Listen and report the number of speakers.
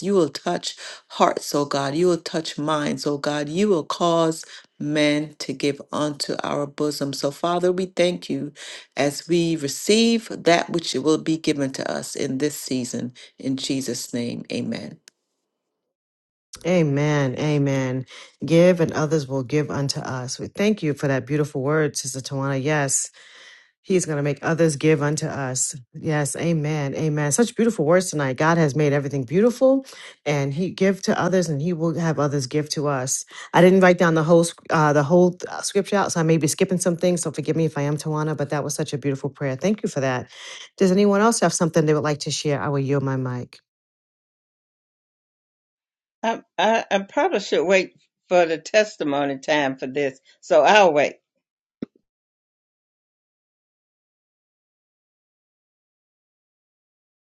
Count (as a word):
three